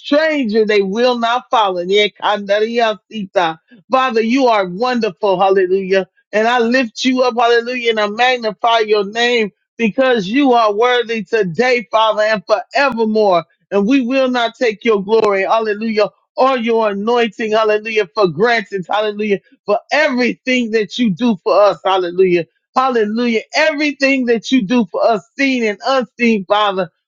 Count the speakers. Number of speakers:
one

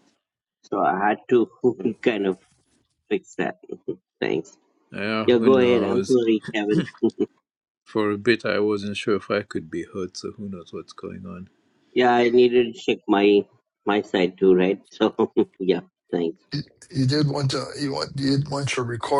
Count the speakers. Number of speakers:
three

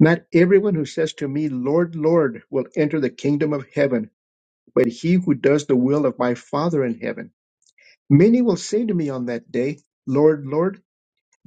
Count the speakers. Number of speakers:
one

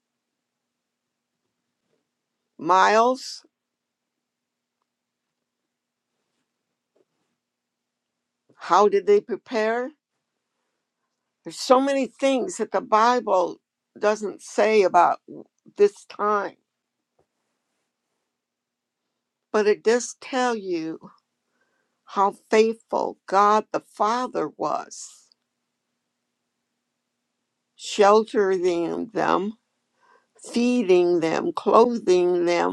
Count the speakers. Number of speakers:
one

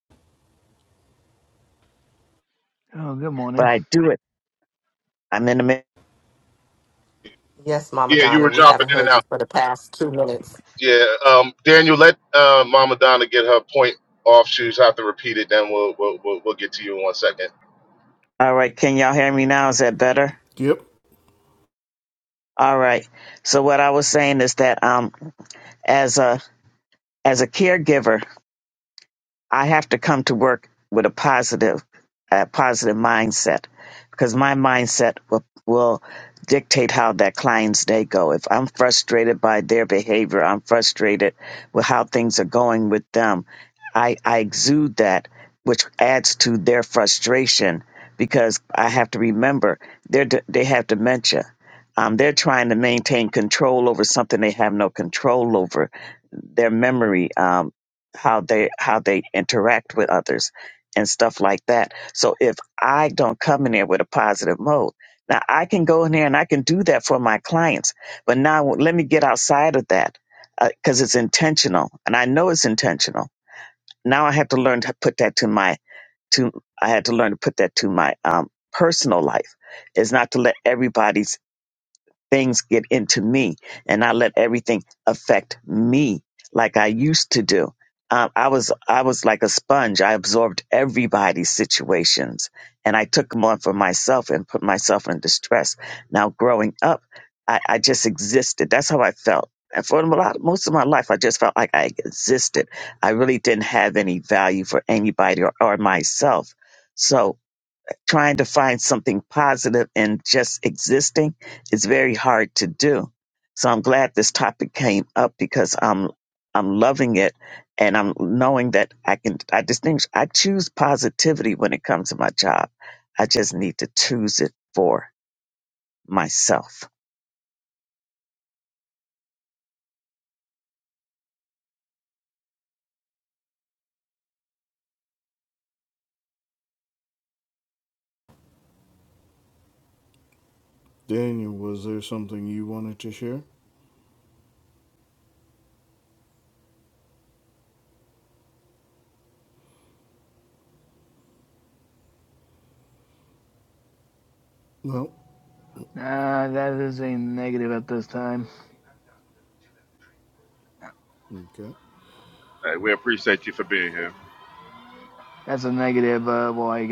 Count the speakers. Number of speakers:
six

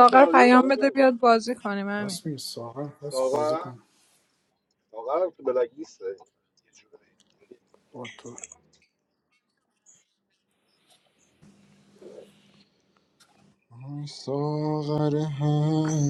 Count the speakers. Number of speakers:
four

